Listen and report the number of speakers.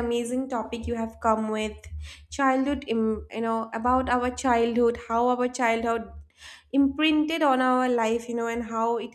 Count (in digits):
1